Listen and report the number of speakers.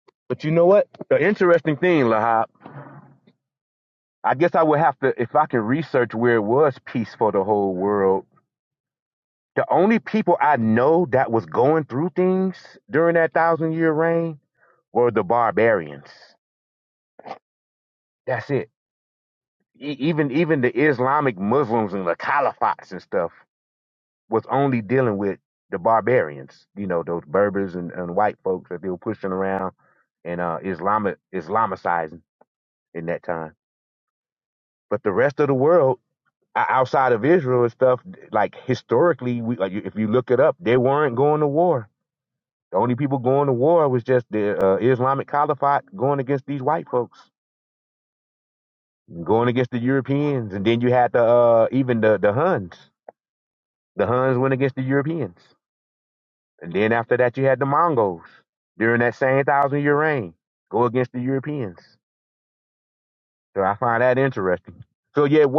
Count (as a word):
one